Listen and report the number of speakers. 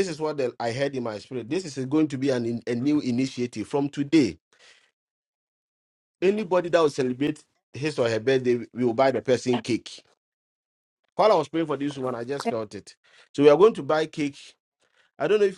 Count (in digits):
1